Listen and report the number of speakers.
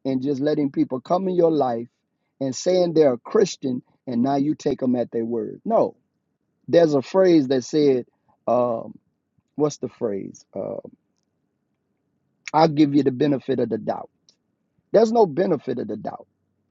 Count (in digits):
1